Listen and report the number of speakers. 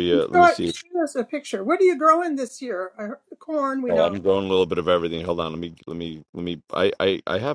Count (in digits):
2